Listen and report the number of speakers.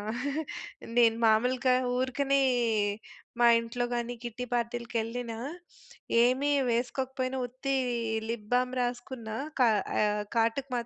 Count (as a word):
one